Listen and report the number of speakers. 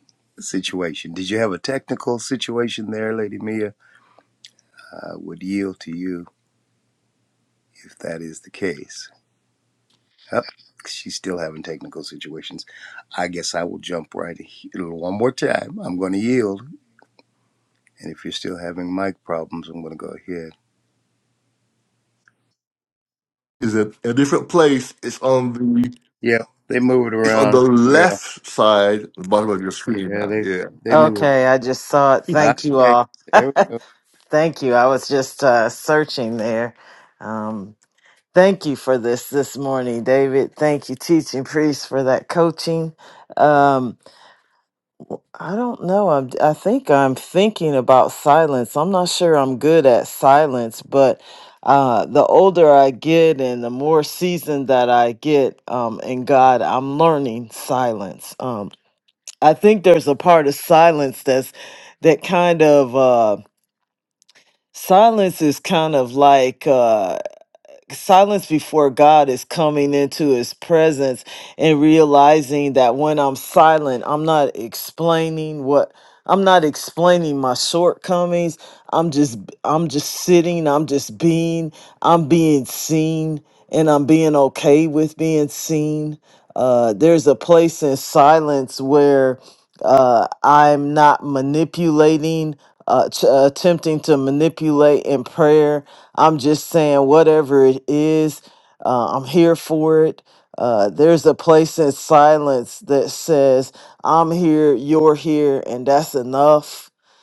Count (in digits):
3